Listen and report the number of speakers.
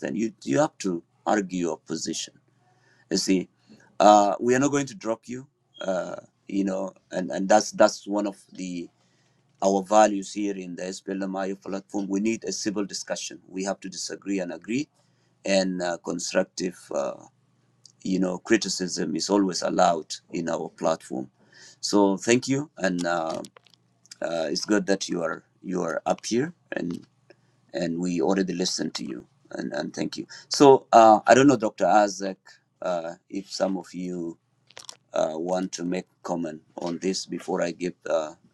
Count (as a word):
one